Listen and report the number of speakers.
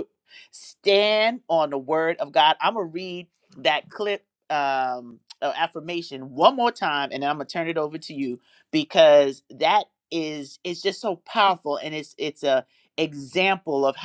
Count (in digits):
1